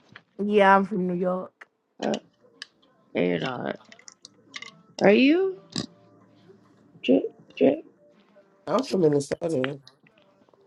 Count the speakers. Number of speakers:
3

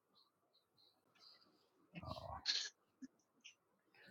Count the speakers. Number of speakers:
0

